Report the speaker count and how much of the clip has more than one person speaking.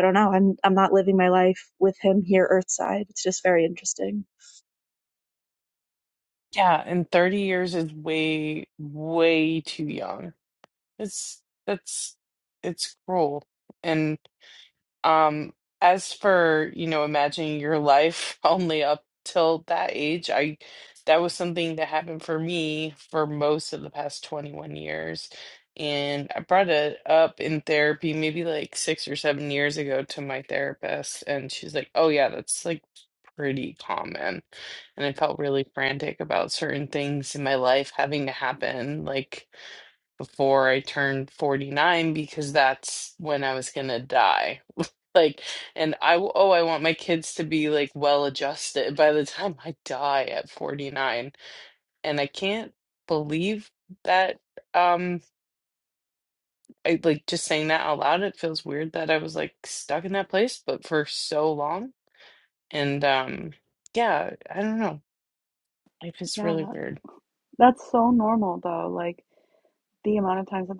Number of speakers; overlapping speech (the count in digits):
3, about 1%